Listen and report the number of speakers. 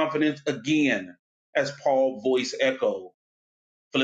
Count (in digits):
1